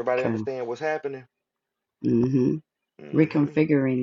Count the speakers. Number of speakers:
two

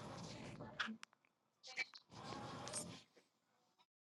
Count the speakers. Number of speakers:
zero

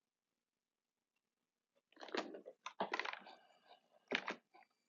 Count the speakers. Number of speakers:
zero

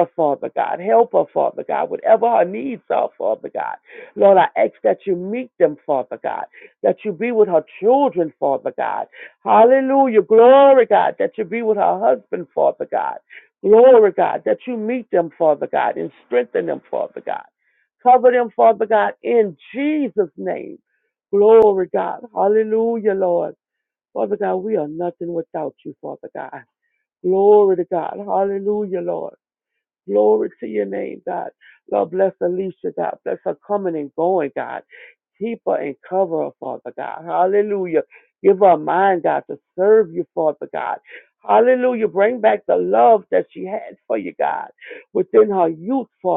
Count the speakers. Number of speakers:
one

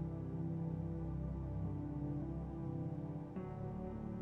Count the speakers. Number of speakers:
zero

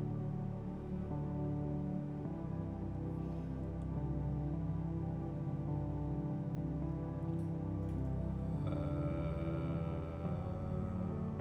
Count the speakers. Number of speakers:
zero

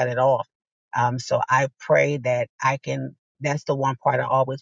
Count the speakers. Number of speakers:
one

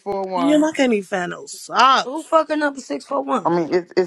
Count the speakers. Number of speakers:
three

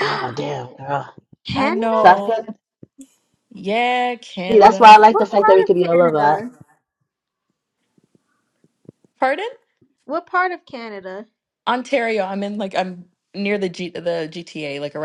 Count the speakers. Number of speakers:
three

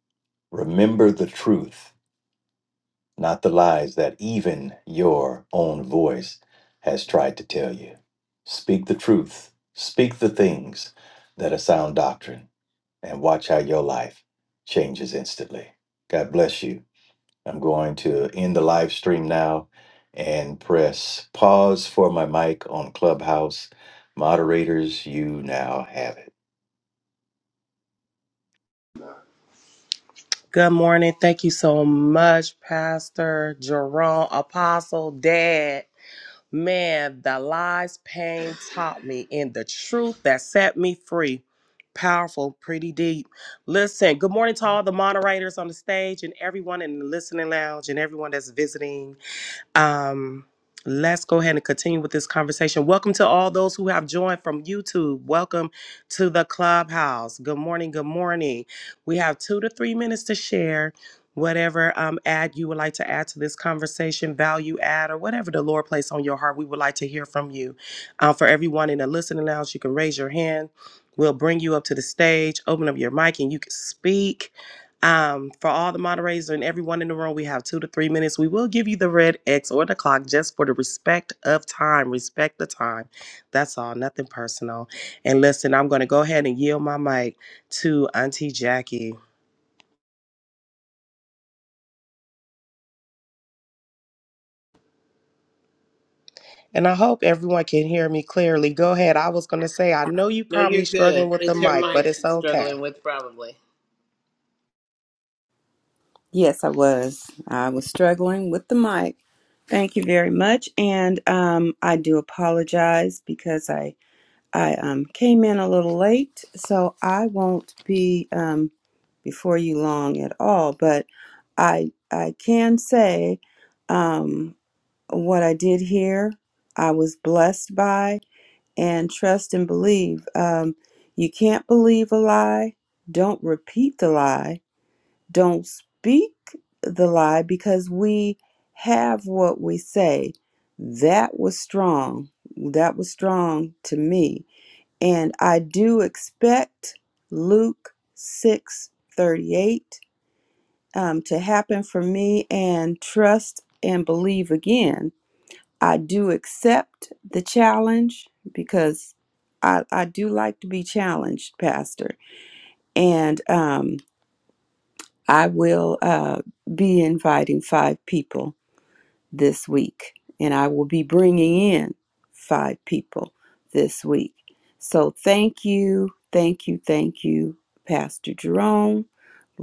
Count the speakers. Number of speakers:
four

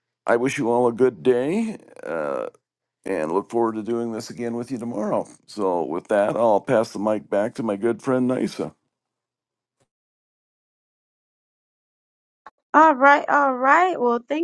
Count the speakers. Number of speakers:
two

